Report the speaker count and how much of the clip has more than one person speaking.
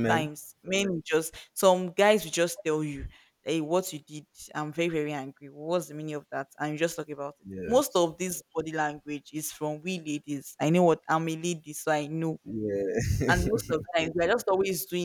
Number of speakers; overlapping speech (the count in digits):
2, about 3%